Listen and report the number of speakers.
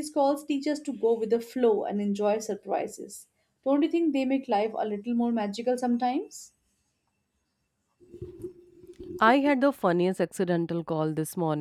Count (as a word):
two